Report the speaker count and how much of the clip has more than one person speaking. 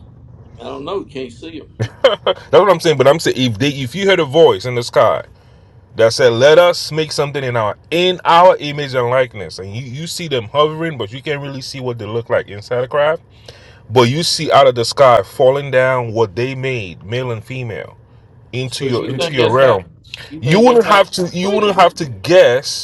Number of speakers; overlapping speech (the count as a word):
two, about 9%